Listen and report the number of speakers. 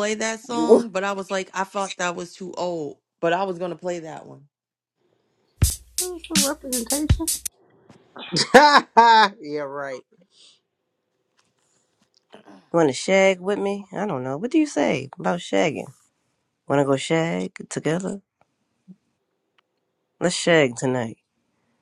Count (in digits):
3